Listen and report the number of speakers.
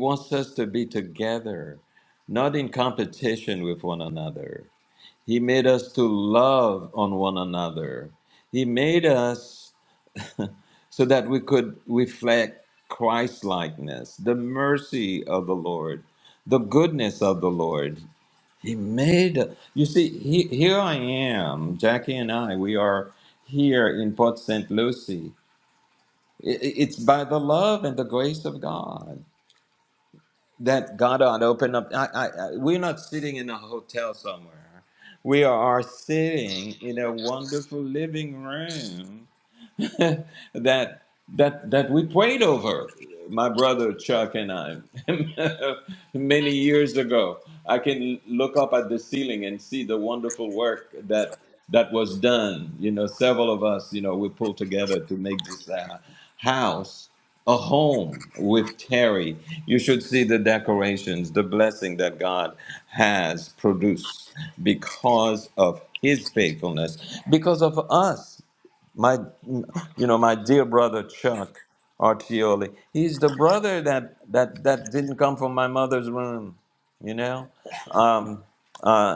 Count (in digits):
1